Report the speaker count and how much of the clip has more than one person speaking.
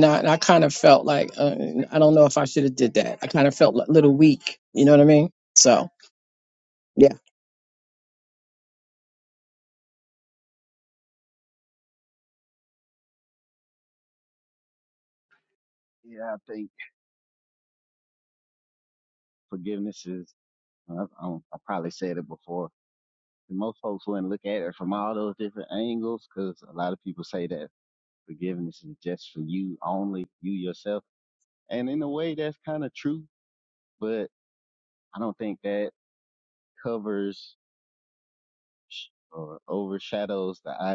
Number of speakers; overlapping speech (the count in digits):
2, no overlap